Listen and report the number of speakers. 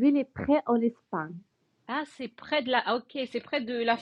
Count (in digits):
2